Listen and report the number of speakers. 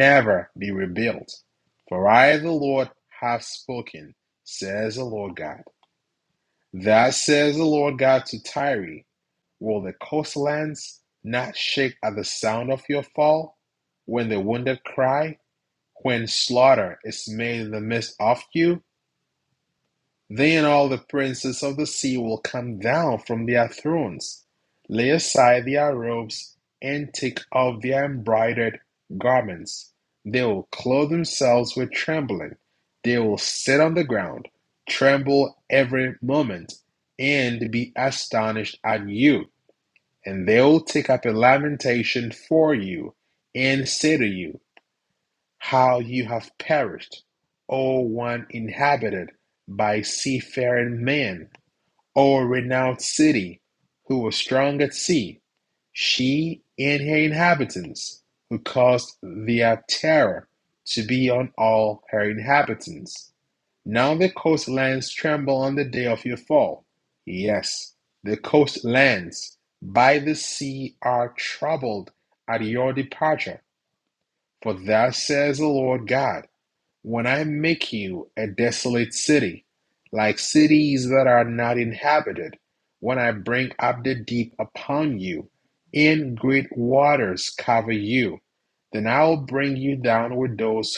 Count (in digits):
1